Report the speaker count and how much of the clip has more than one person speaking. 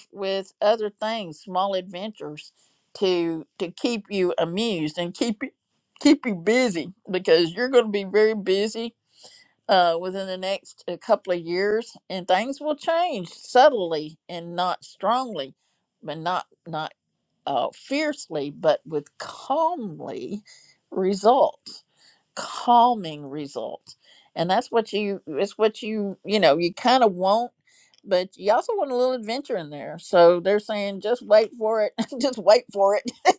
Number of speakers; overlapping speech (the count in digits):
1, no overlap